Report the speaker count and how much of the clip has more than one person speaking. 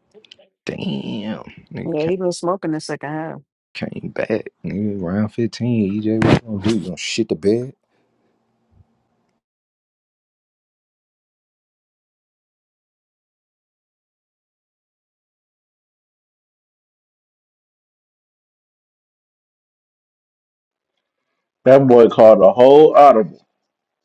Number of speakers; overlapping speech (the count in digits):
3, about 1%